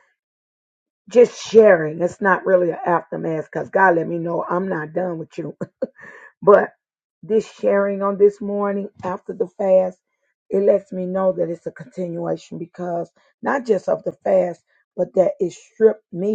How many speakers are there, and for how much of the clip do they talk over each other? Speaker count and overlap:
one, no overlap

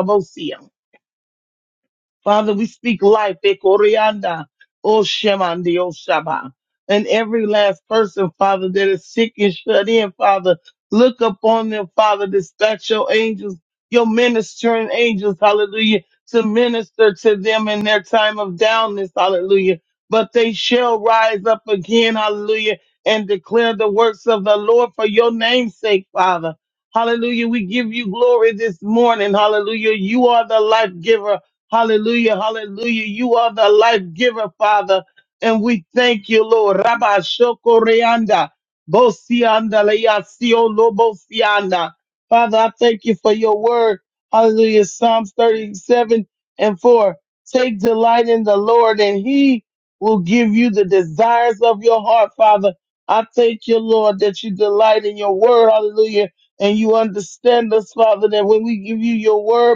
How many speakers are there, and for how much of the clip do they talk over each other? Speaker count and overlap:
one, no overlap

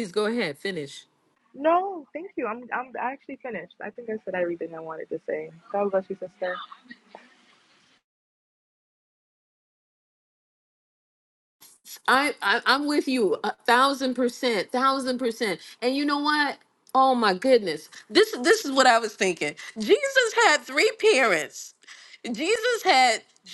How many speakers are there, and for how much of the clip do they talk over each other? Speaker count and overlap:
two, no overlap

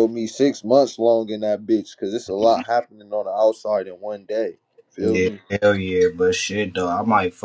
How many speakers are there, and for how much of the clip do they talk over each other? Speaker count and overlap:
two, about 5%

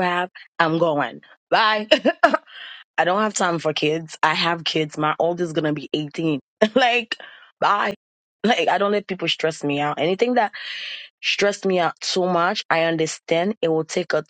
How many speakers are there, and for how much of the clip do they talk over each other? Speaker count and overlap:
one, no overlap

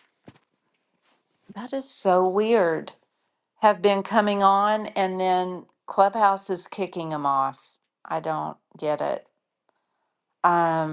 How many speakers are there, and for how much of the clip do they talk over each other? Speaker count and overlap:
one, no overlap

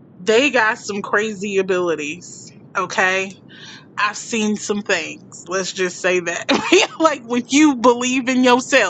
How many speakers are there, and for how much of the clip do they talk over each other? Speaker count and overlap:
one, no overlap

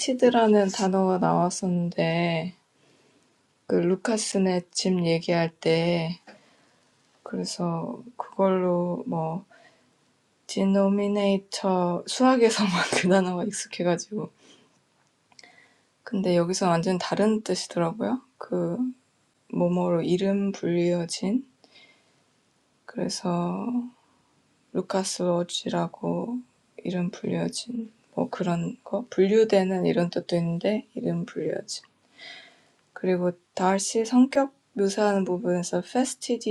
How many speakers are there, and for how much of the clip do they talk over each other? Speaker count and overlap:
one, no overlap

